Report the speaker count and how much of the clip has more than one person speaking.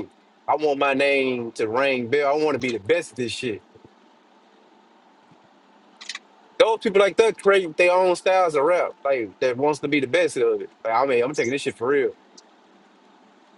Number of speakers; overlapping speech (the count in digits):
1, no overlap